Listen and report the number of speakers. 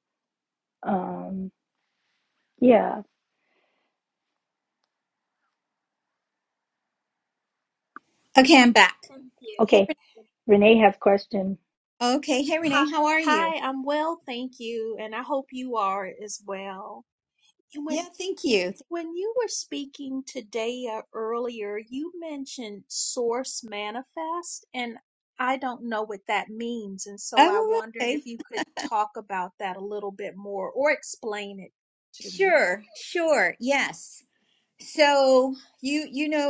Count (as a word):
three